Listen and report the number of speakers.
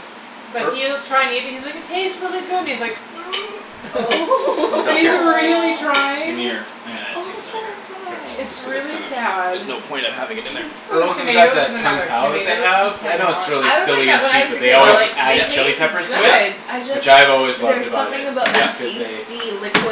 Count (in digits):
4